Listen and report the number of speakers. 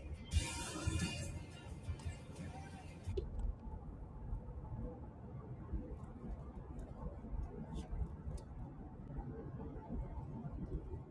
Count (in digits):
0